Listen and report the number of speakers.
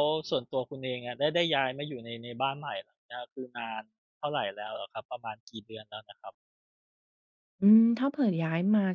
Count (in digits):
2